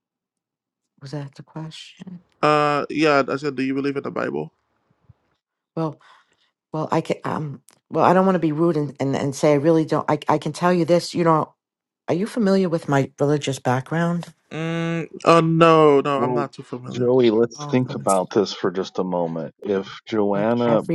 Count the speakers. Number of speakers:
three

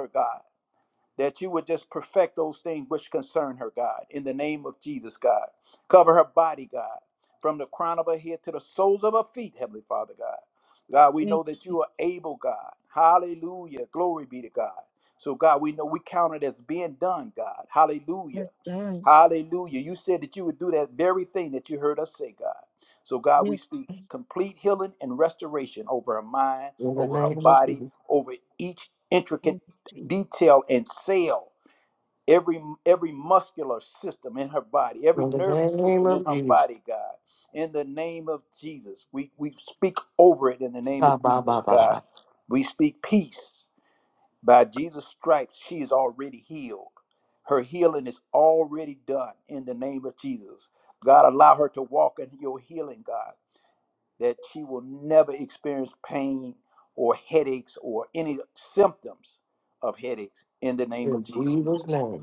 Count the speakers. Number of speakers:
three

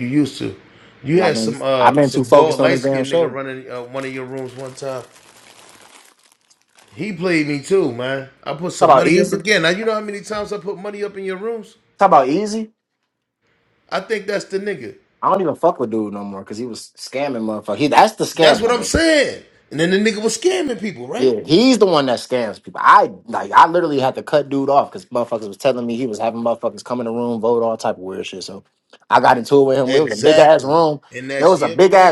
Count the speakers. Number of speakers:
two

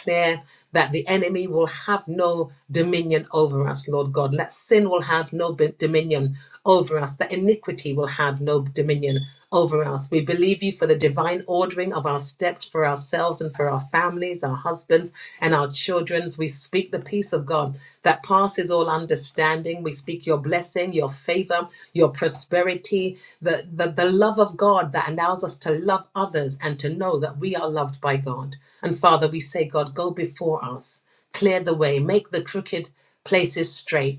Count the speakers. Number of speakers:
one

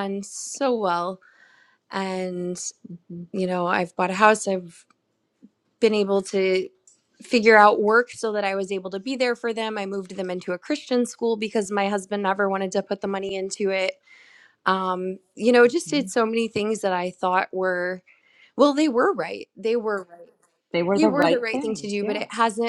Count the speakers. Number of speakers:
two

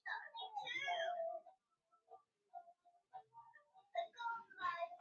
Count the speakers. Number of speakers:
zero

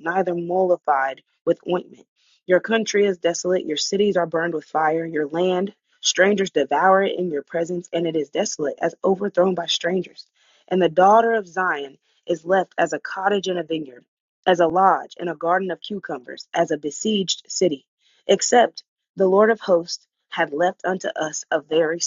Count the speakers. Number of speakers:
one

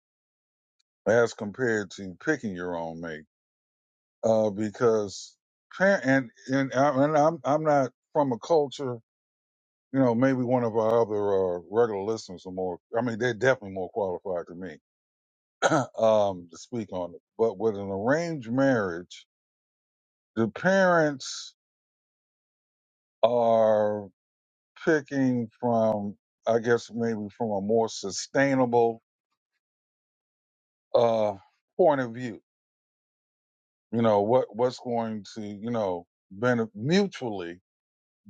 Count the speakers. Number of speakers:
one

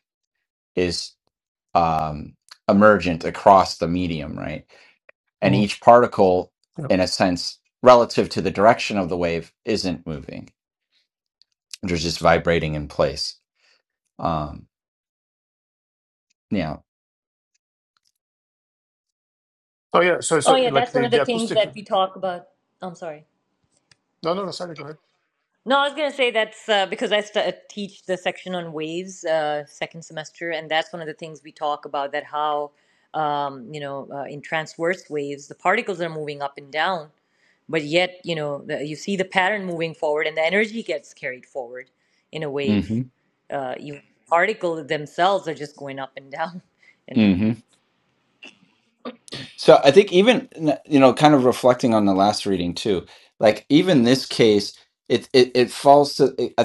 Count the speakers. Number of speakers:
three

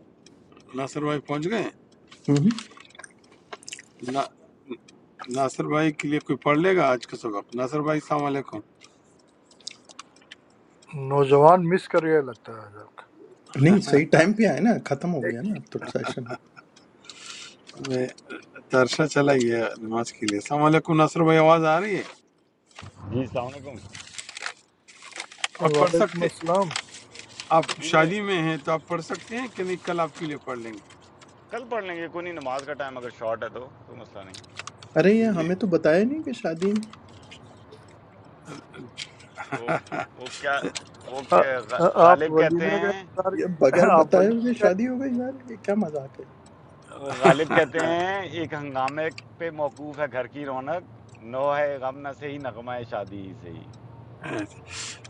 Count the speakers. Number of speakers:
four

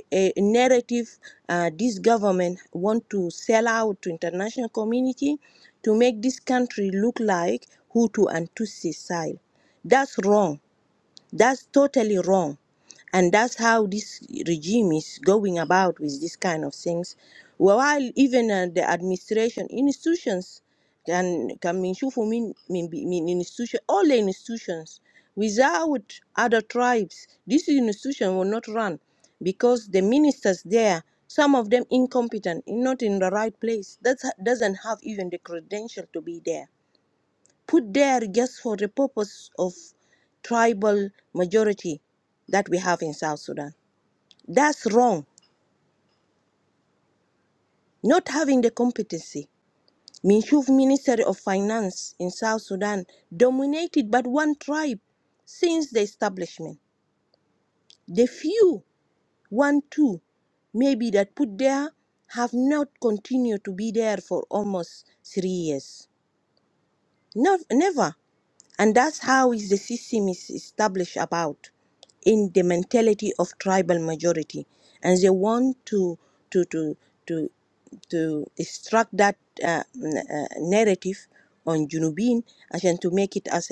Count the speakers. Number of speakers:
one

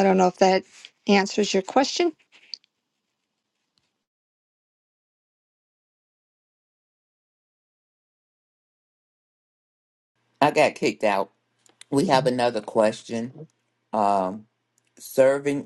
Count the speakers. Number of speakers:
two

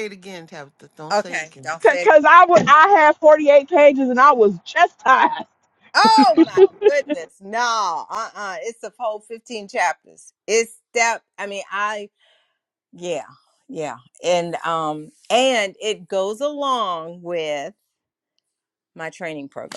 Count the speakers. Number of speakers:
three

